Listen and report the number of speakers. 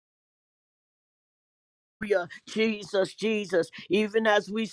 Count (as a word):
one